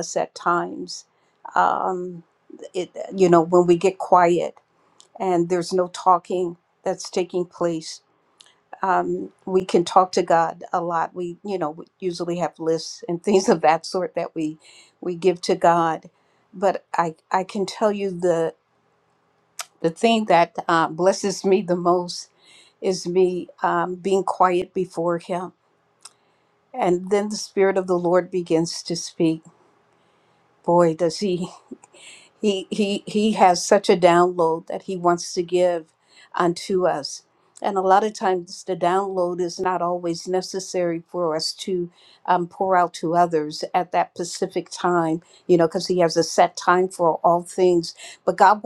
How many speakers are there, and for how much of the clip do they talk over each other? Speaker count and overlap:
one, no overlap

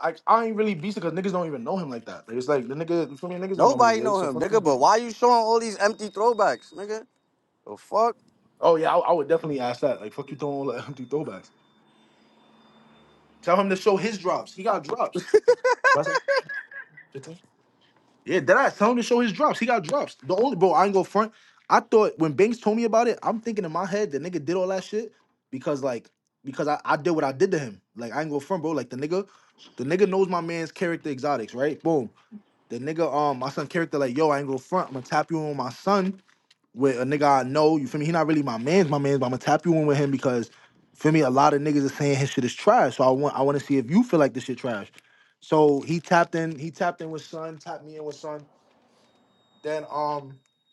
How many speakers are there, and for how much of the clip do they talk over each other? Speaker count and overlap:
two, about 2%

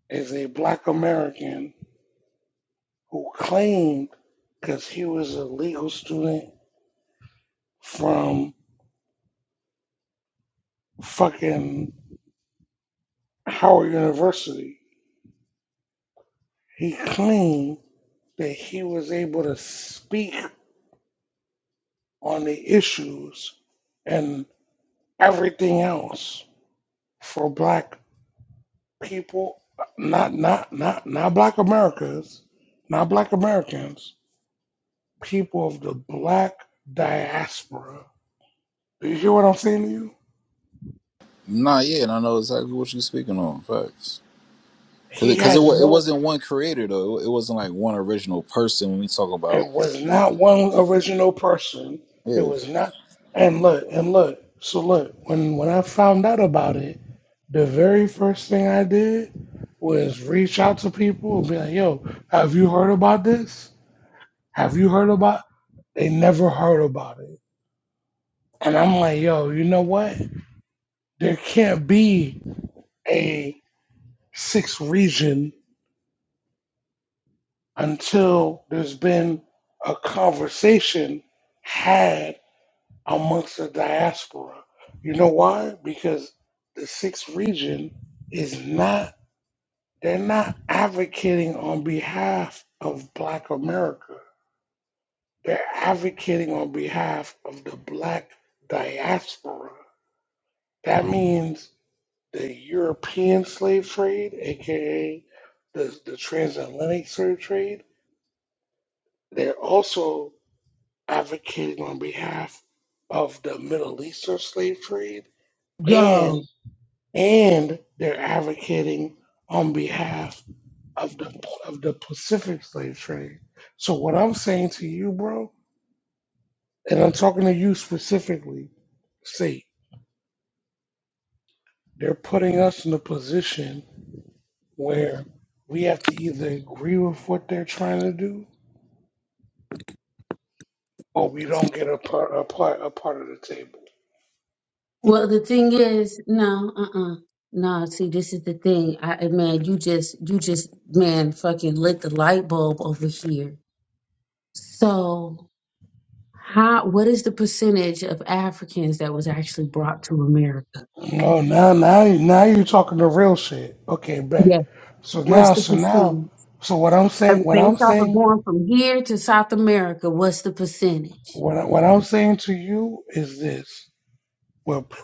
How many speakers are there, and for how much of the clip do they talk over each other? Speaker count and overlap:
three, about 2%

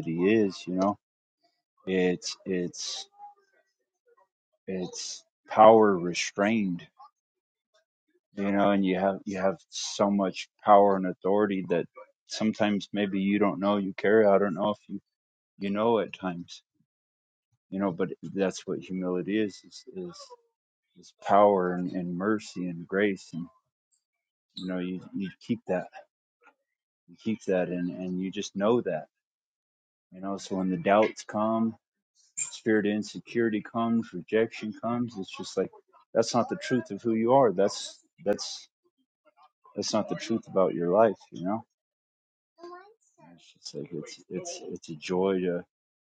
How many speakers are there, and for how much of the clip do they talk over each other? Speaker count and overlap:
one, no overlap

